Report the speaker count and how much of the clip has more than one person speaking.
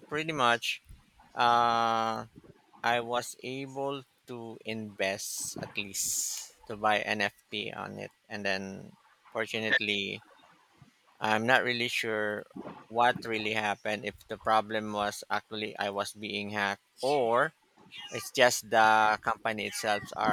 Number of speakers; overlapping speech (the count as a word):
one, no overlap